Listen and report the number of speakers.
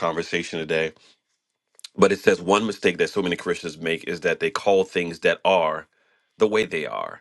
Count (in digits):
1